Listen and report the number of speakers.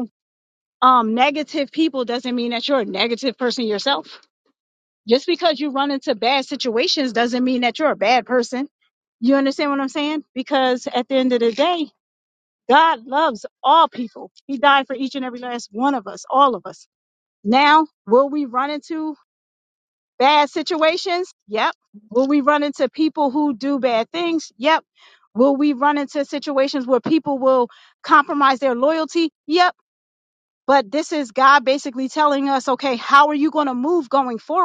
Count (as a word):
one